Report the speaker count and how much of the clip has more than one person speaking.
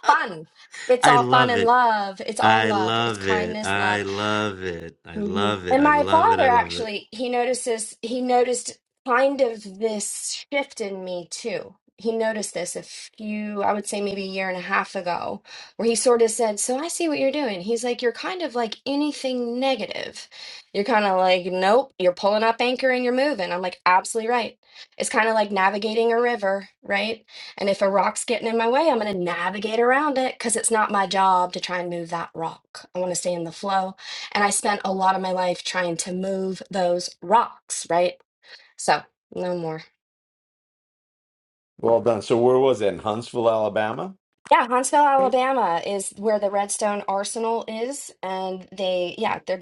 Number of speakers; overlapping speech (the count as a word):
three, about 8%